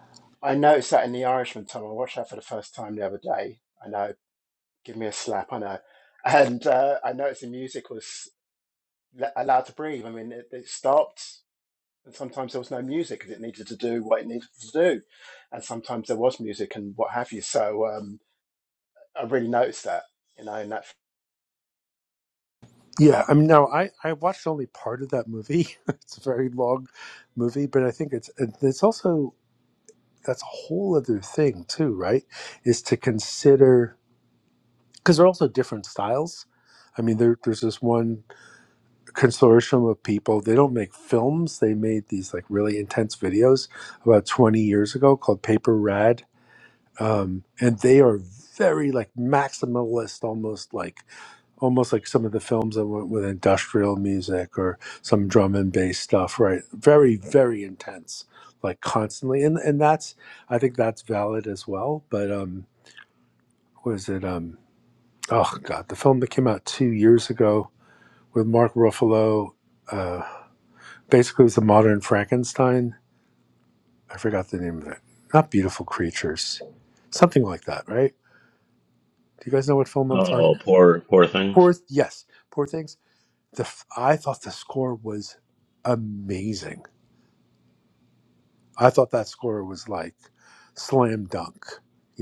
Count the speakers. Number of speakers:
3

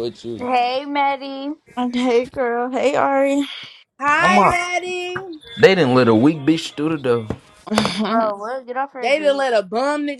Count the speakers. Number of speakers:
4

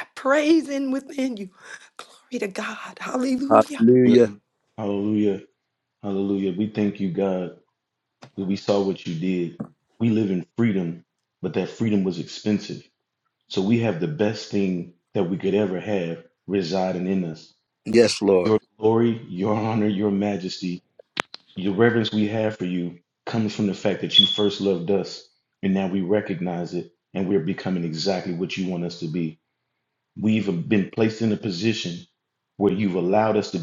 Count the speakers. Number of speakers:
3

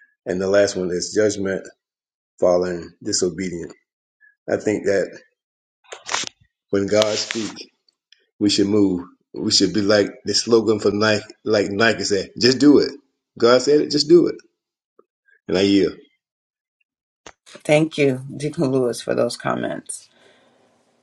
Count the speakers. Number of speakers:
2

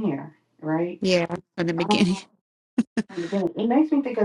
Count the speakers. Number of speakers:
2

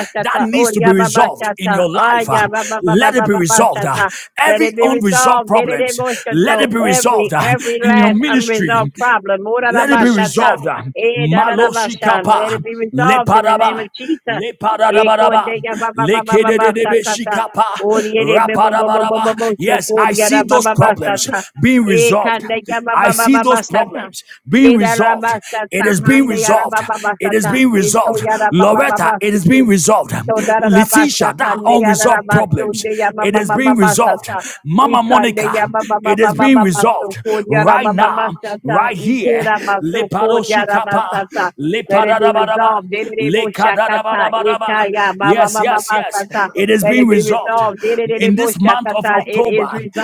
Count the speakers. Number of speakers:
2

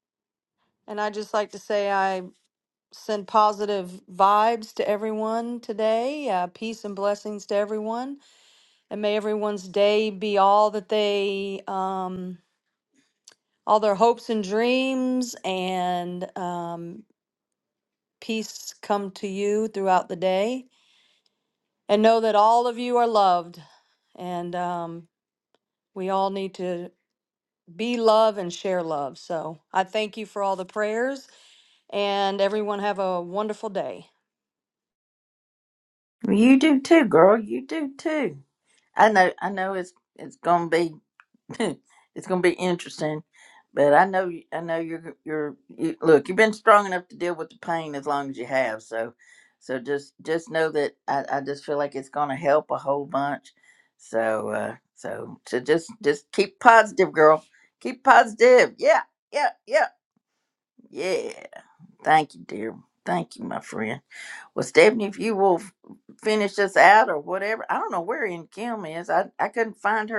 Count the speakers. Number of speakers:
2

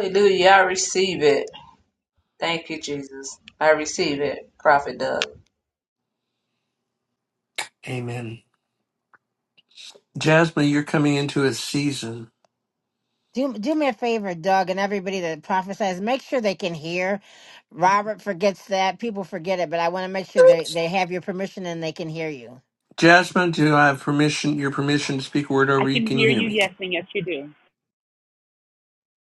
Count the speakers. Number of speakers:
4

